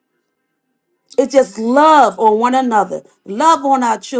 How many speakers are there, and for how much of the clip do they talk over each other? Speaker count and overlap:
1, no overlap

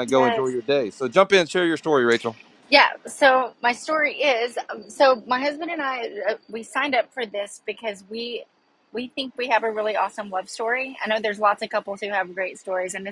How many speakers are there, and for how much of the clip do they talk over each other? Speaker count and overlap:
2, about 4%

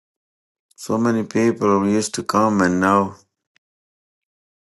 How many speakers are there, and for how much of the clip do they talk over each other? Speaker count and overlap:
1, no overlap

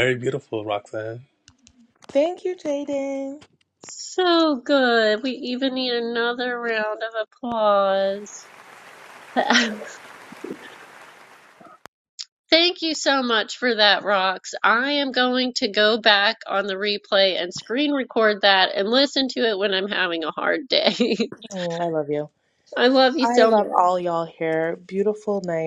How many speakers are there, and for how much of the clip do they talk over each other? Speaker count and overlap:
3, about 2%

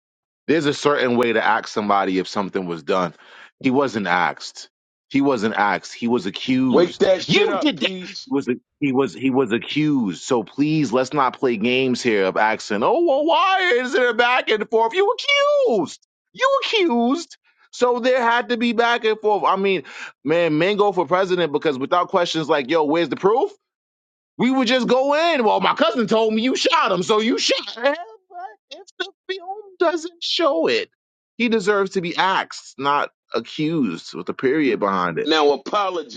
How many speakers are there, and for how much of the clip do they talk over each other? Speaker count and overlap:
2, about 5%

